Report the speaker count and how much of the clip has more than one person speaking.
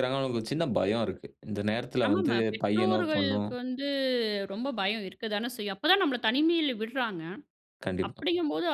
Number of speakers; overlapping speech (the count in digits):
2, about 18%